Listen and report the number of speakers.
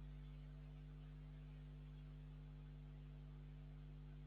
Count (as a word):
zero